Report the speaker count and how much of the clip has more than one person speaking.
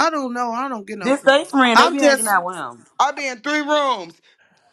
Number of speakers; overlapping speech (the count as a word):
three, about 16%